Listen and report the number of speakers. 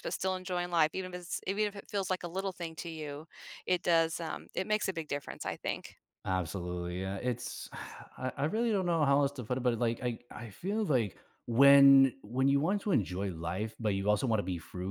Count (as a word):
two